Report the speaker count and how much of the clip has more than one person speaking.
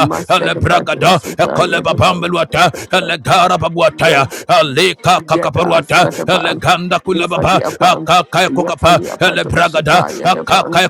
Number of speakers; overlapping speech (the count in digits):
2, about 50%